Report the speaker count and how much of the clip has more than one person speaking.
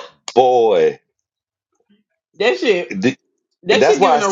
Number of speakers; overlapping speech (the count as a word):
two, about 15%